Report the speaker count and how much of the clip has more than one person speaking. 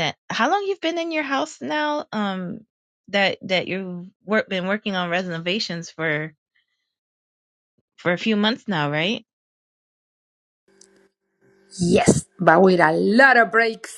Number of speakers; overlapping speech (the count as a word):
two, no overlap